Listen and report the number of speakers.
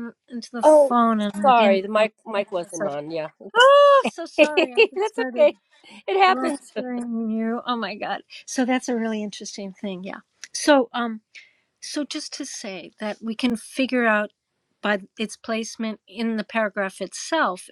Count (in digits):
2